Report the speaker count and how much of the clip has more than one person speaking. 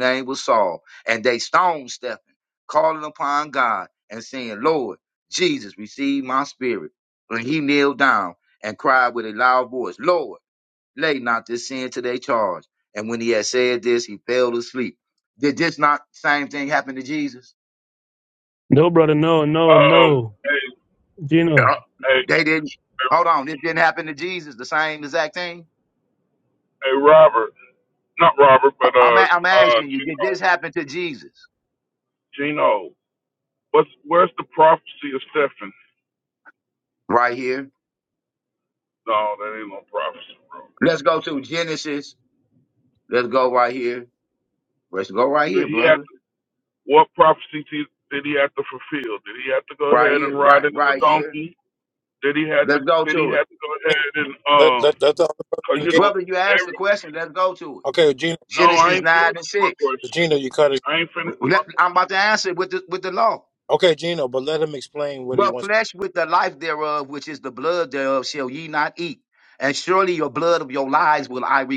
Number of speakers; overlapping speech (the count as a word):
four, about 12%